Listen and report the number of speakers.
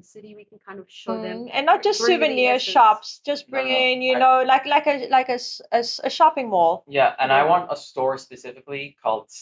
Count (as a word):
three